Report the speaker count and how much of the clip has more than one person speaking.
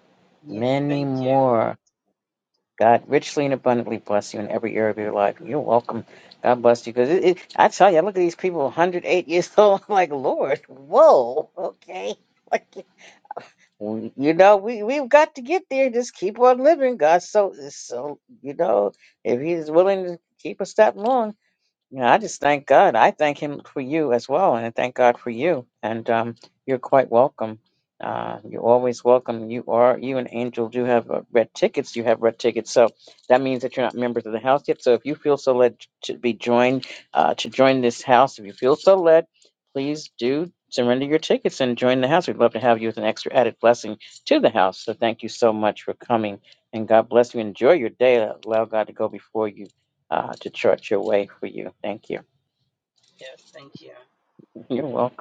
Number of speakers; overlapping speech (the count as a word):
two, about 2%